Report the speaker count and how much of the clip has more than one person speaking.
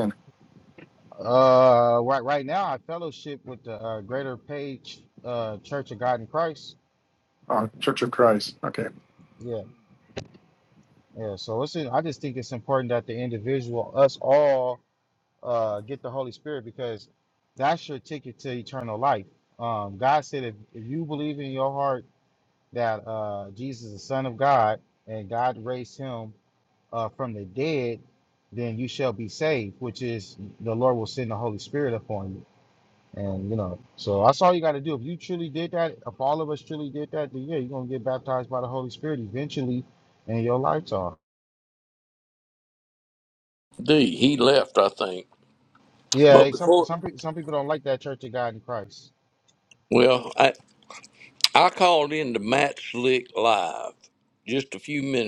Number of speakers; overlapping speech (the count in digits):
3, about 1%